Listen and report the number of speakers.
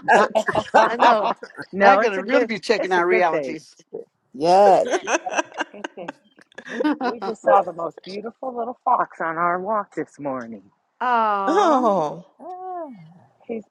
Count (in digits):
4